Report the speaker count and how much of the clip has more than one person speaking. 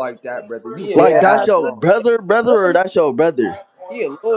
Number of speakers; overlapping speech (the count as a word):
three, about 36%